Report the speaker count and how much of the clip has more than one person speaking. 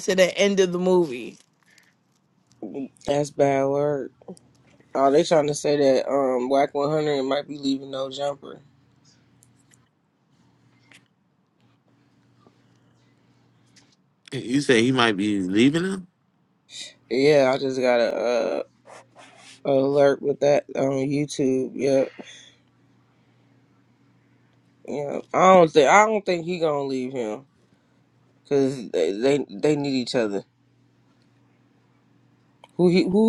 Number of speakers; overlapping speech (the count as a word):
three, no overlap